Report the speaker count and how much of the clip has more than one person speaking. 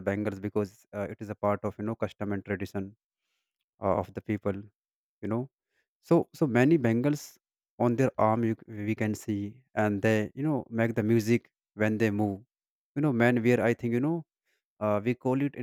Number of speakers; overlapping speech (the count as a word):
one, no overlap